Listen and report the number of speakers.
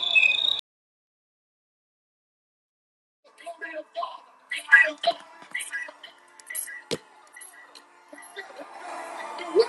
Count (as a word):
zero